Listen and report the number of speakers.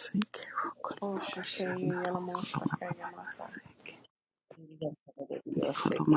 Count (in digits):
3